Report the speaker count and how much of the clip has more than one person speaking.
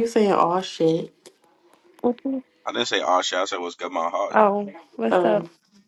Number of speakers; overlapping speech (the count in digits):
3, about 8%